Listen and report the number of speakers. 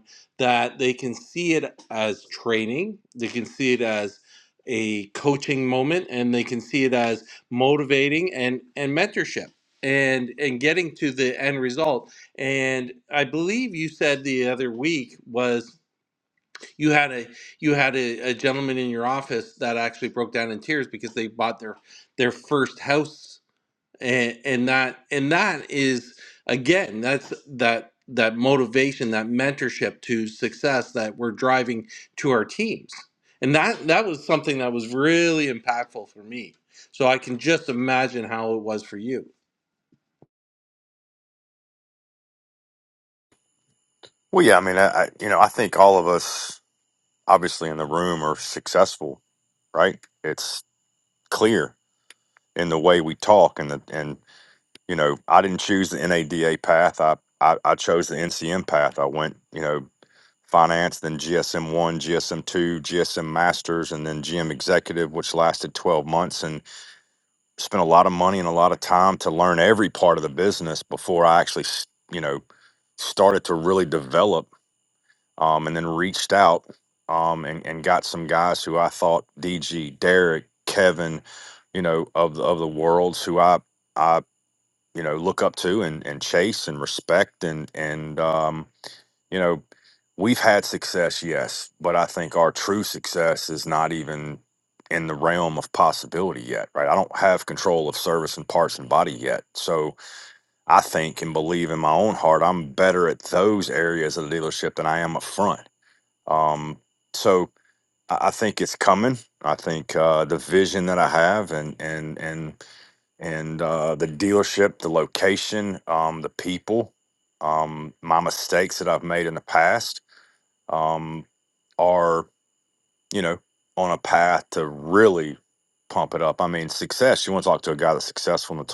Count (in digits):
2